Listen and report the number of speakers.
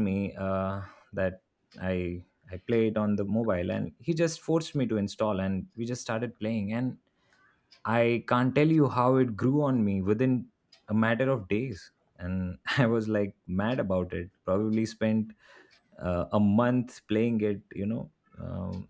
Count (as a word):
one